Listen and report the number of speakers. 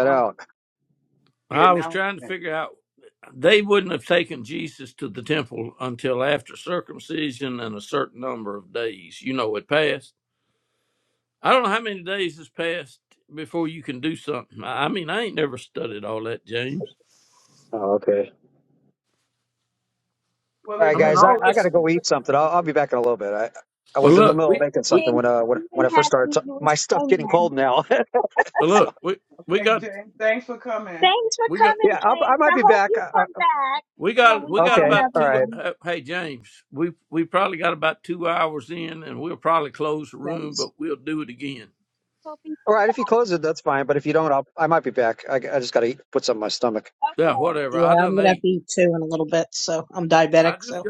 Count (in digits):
5